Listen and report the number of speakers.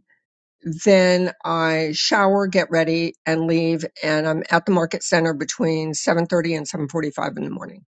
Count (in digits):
1